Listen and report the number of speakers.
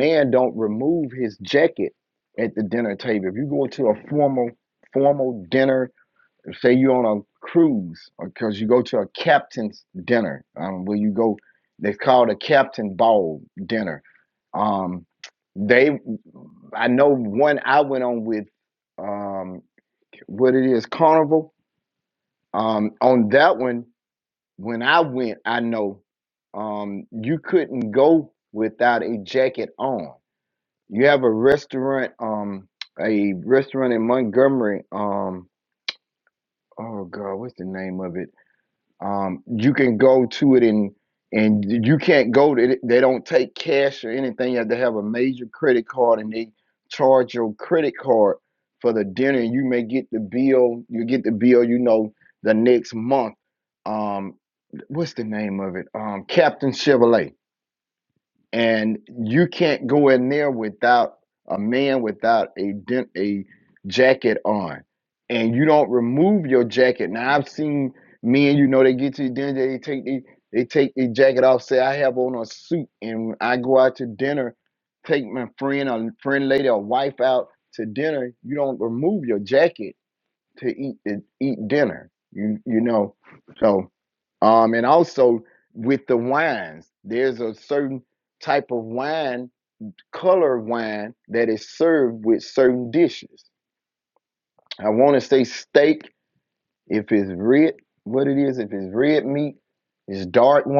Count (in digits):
1